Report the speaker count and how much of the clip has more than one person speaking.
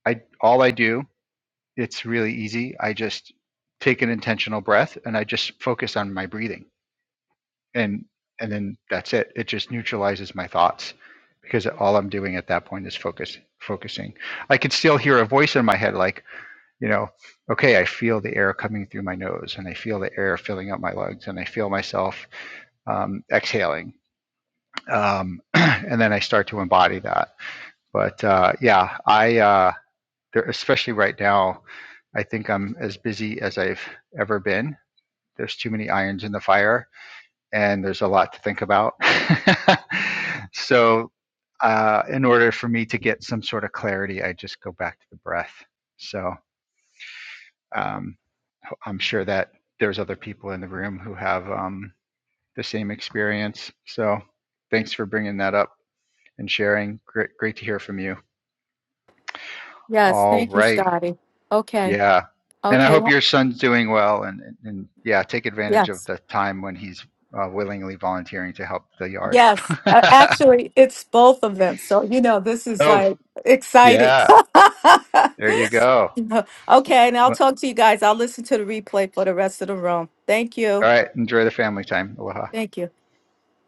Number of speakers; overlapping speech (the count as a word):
two, about 3%